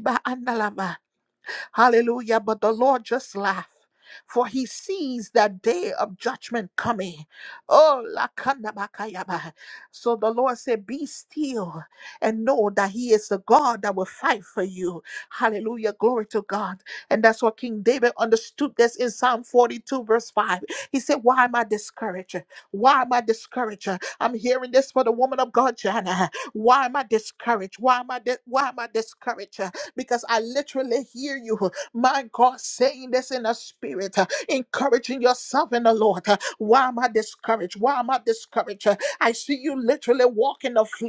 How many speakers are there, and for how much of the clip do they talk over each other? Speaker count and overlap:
one, no overlap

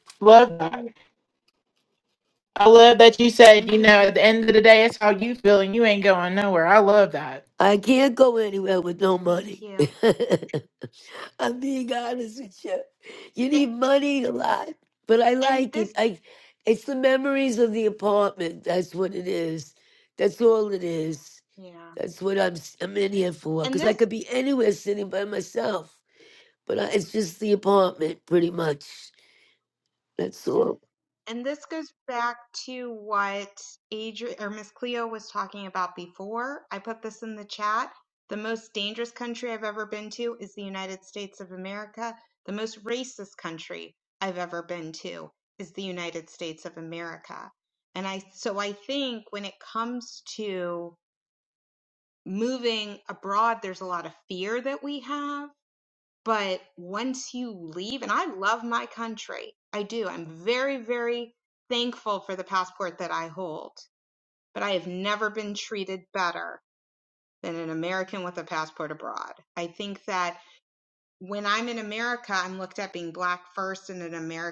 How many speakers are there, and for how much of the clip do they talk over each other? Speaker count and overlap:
three, about 3%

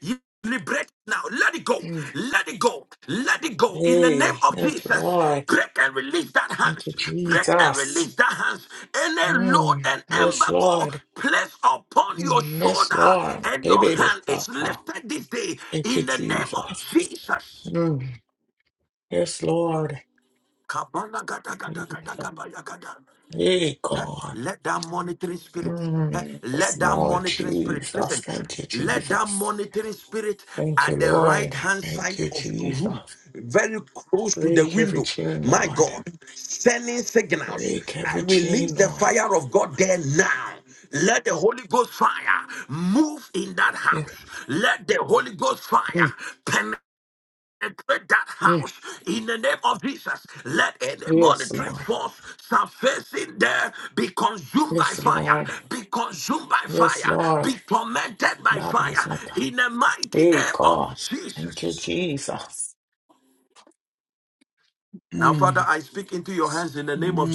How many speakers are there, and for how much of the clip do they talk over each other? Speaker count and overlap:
two, about 35%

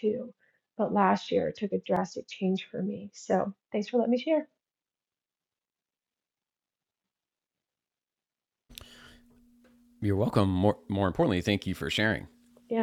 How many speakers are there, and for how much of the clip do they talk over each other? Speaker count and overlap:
two, no overlap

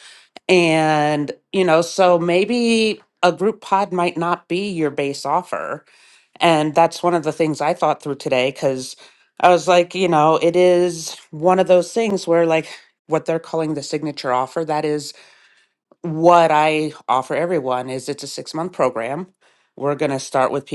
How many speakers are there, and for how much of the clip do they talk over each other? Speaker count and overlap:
one, no overlap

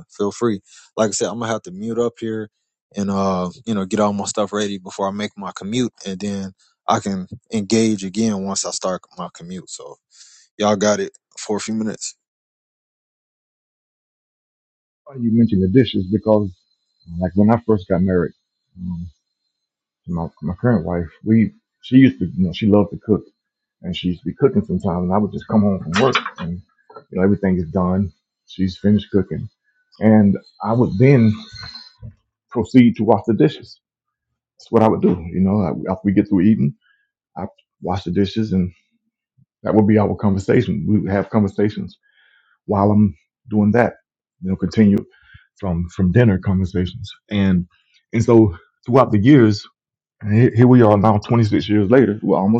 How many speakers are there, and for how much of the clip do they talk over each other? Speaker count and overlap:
two, no overlap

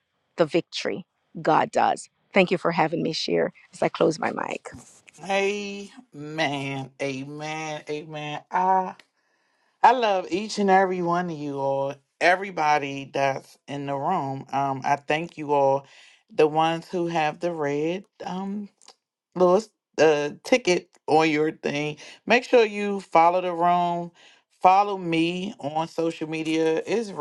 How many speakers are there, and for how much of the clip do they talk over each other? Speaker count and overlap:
two, no overlap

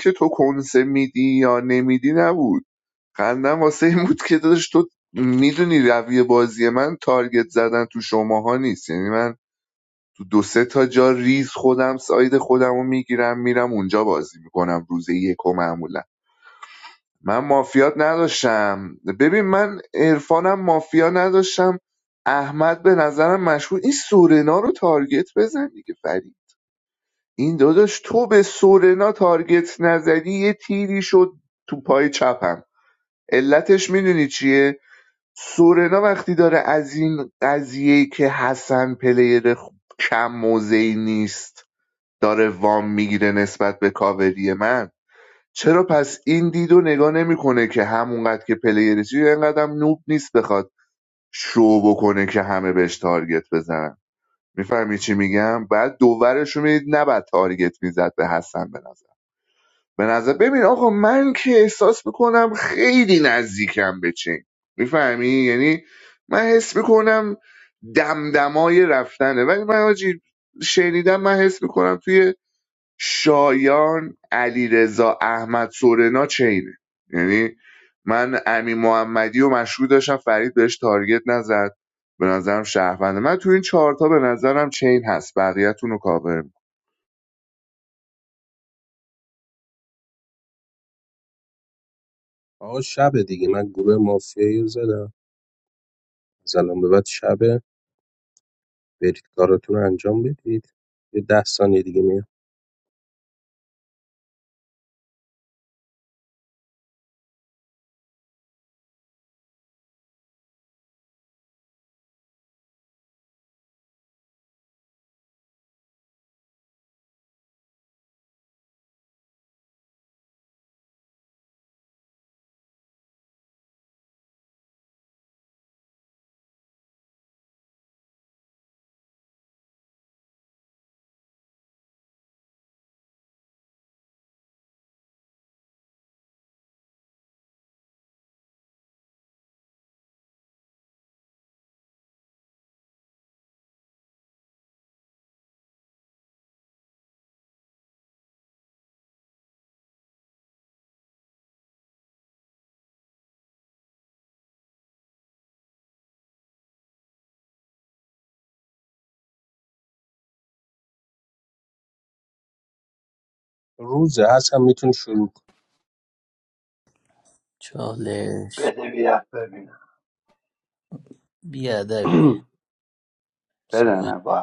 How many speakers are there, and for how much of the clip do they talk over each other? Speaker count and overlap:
four, under 1%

